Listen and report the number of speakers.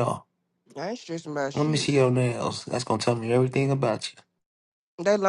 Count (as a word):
two